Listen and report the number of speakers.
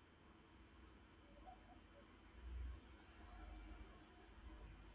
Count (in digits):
0